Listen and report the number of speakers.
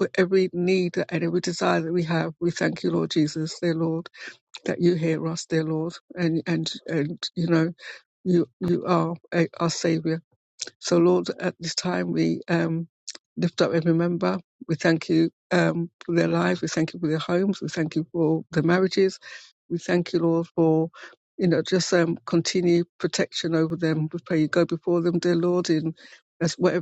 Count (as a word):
one